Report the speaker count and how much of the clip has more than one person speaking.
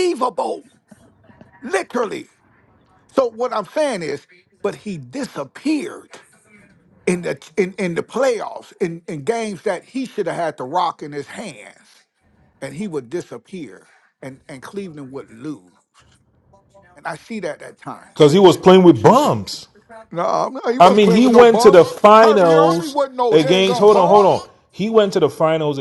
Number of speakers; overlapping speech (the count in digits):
2, about 12%